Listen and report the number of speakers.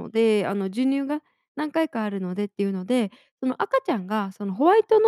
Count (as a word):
one